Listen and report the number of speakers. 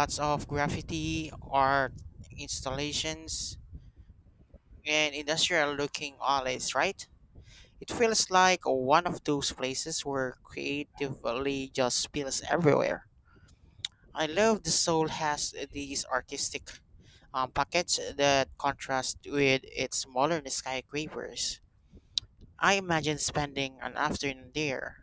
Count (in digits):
1